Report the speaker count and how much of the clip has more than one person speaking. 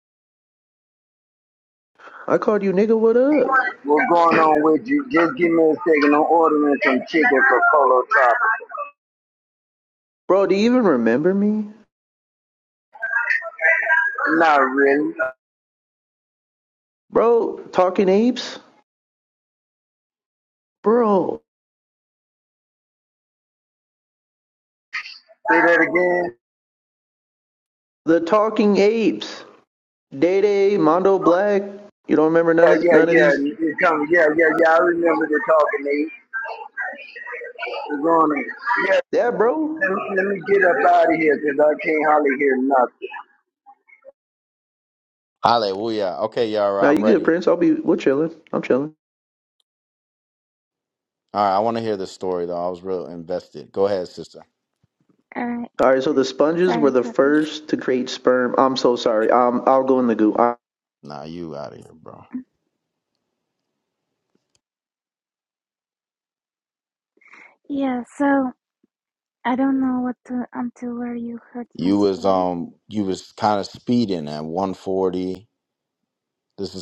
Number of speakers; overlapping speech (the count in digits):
4, about 4%